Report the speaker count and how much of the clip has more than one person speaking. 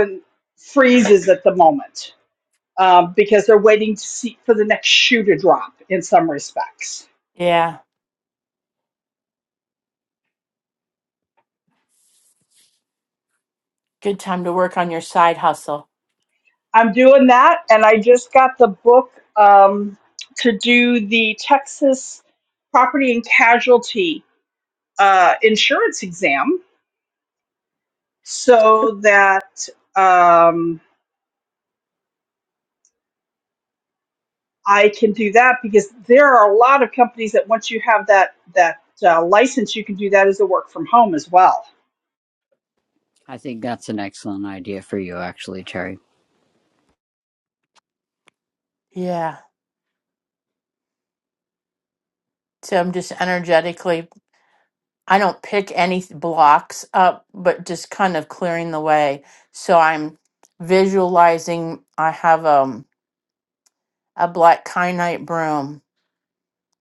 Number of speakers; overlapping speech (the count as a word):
three, no overlap